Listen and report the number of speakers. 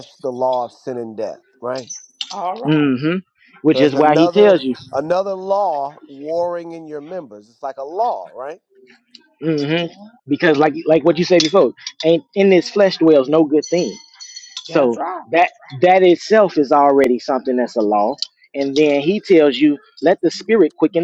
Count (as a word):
three